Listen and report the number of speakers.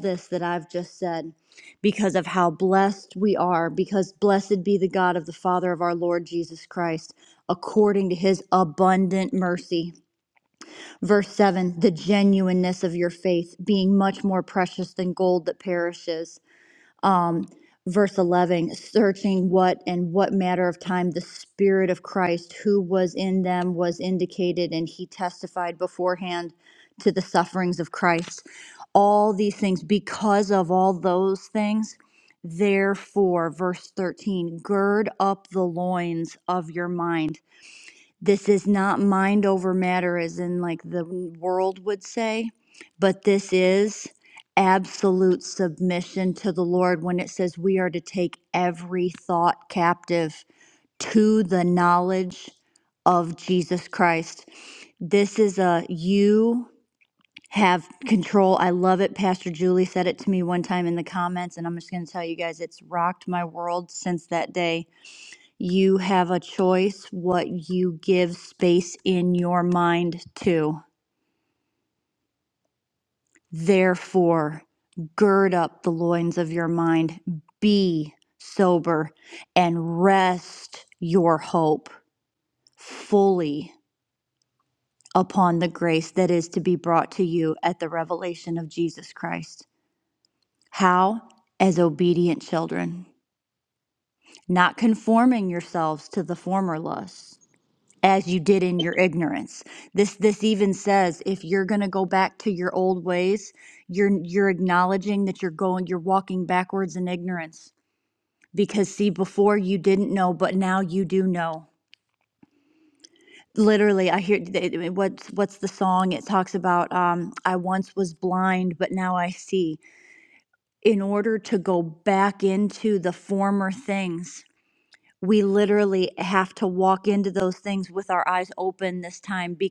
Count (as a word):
one